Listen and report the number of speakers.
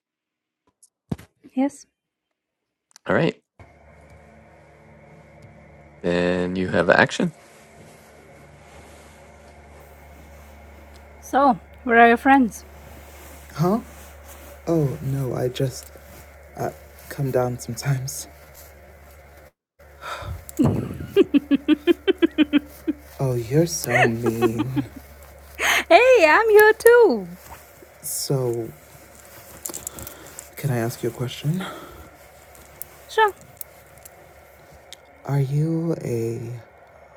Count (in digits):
3